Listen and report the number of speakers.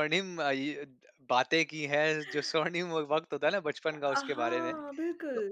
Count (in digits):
2